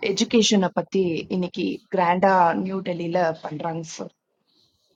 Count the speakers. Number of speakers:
1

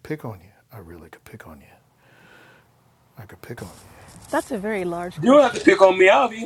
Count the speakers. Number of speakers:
3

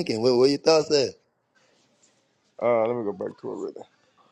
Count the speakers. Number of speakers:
2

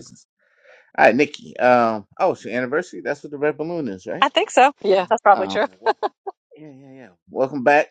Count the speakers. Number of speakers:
2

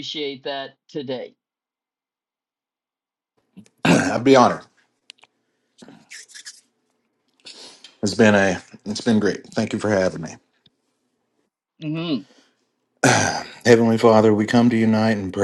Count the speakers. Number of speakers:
2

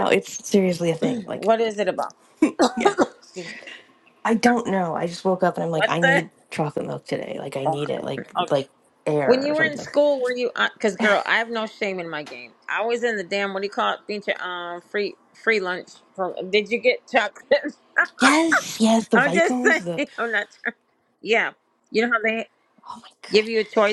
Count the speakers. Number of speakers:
2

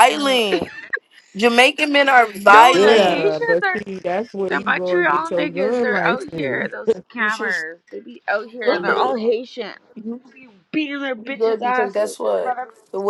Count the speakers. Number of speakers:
3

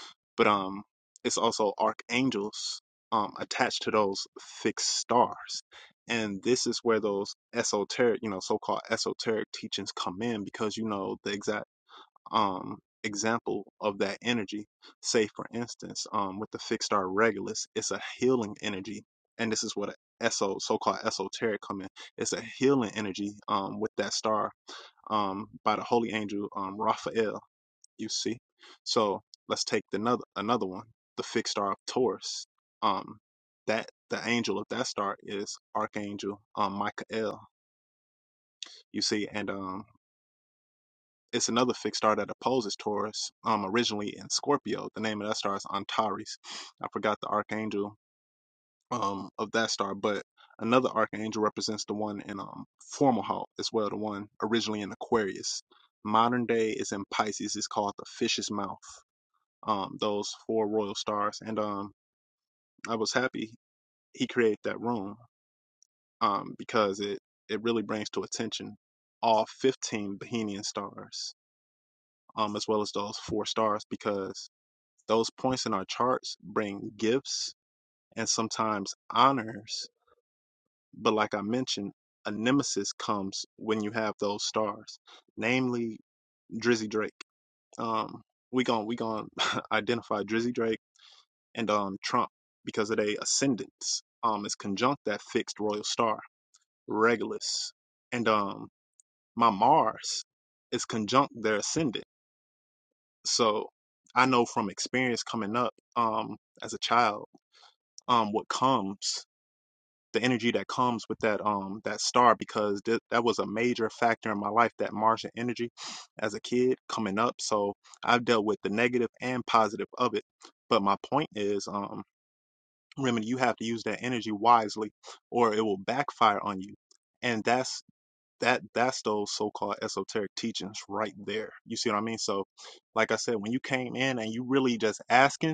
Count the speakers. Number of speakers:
1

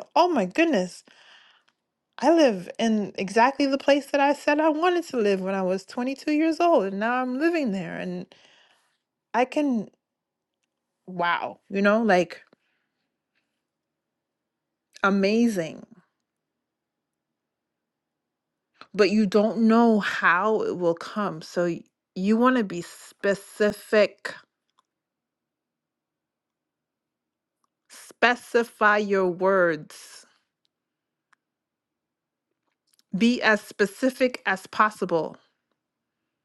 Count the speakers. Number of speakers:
1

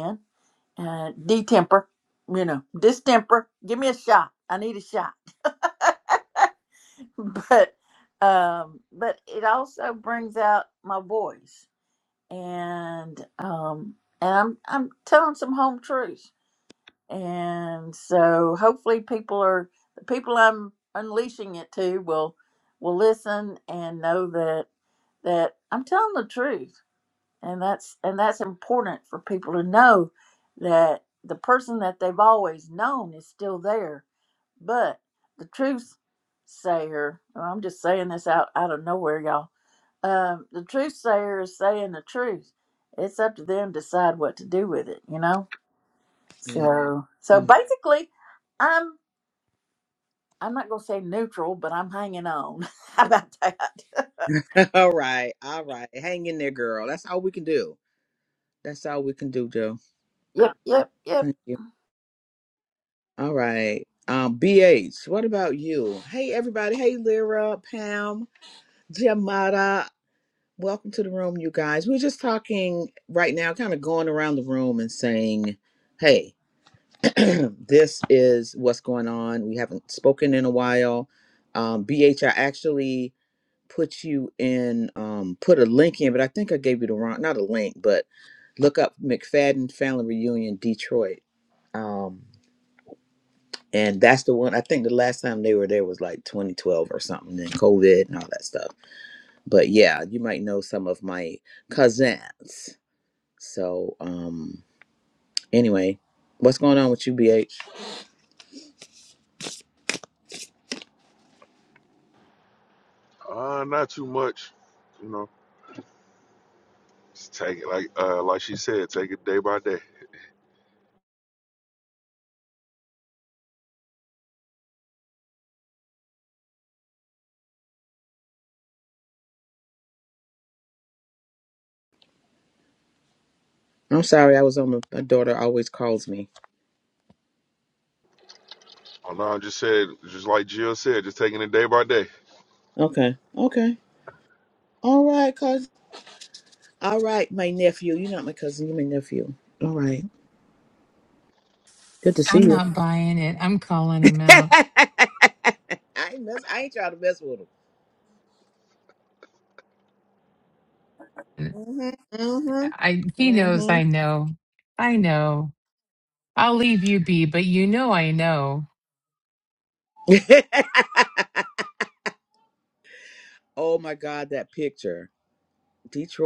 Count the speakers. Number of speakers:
4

